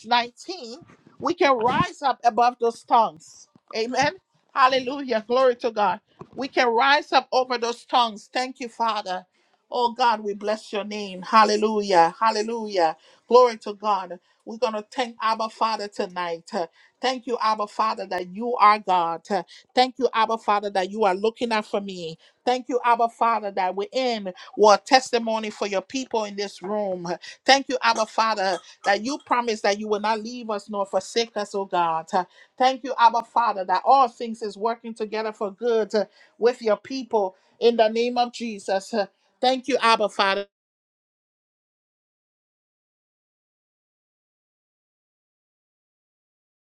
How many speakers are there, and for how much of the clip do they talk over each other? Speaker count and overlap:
one, no overlap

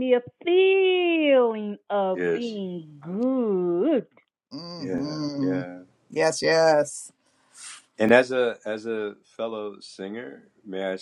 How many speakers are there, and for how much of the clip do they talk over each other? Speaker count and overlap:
three, about 10%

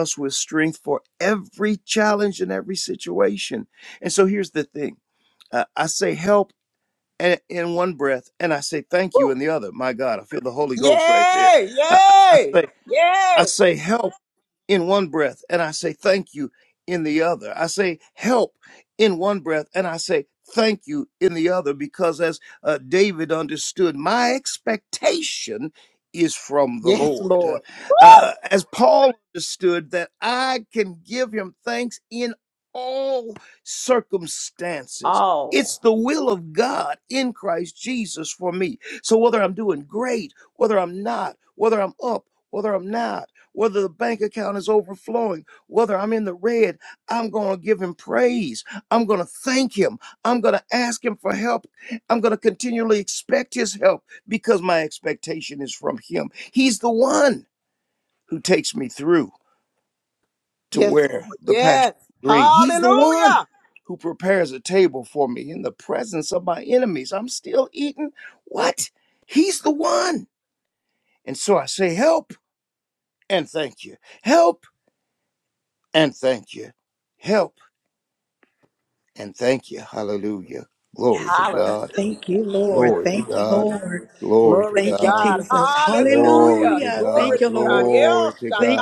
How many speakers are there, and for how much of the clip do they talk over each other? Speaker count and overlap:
four, about 12%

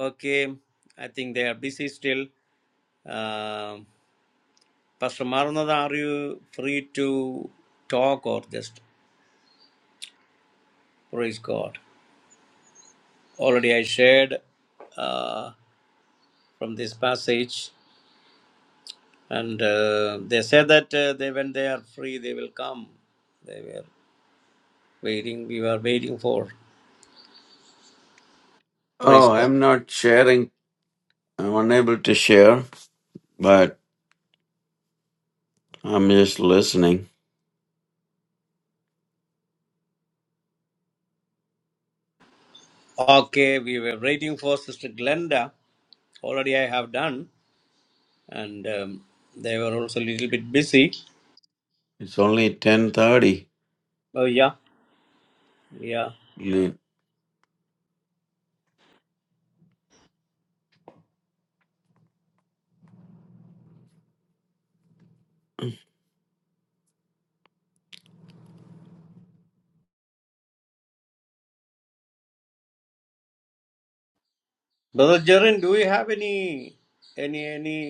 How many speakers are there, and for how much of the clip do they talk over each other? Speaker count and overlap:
two, about 1%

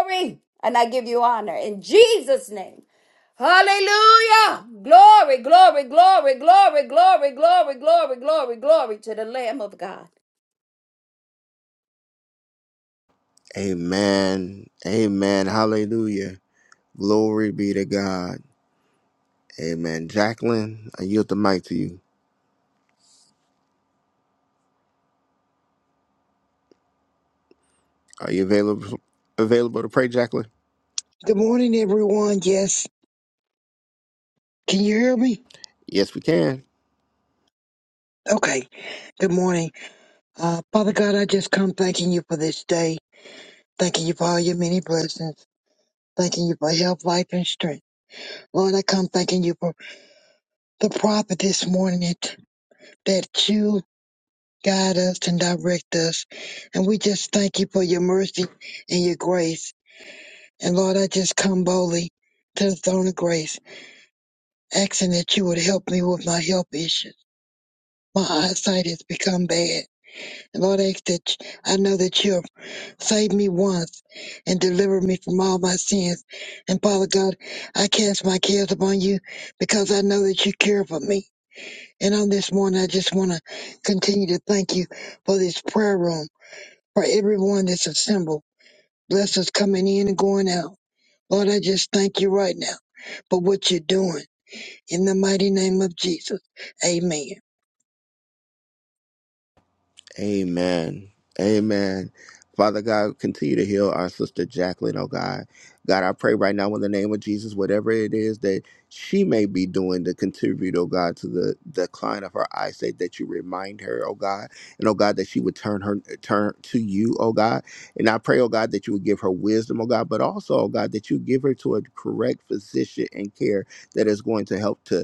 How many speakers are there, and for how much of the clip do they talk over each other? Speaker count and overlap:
three, no overlap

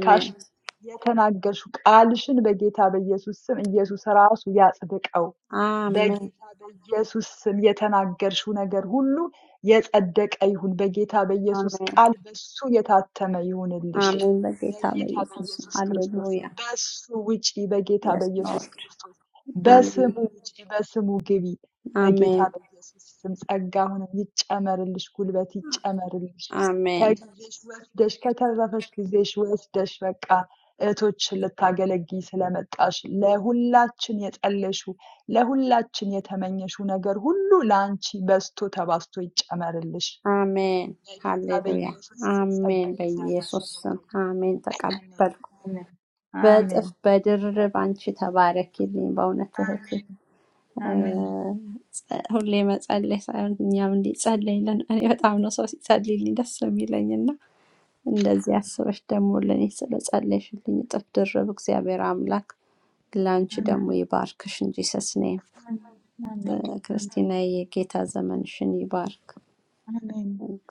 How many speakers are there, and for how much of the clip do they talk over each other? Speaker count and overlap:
two, about 12%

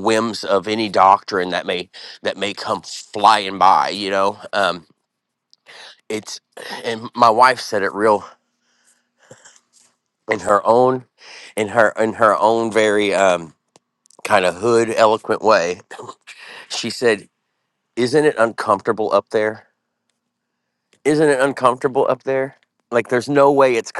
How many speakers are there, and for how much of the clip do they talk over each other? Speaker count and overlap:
one, no overlap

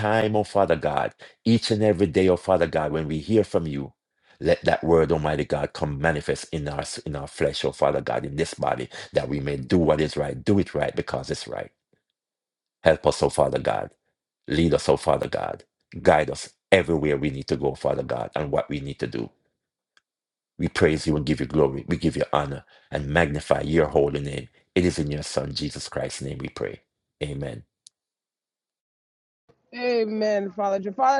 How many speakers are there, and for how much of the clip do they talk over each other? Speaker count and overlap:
two, no overlap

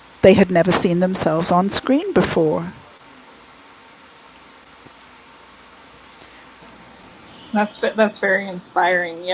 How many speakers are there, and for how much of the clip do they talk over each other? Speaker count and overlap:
two, no overlap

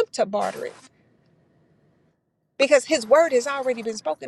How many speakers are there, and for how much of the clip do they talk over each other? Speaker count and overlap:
one, no overlap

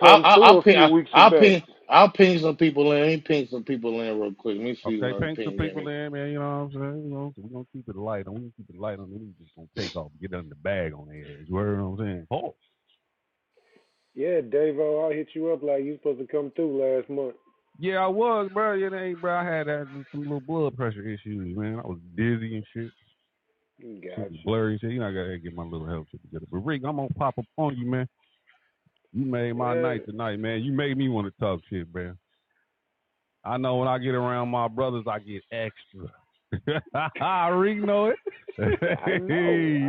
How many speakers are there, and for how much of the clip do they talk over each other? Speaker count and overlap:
three, about 10%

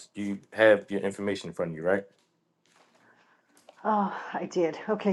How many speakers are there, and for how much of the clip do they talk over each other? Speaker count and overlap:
two, no overlap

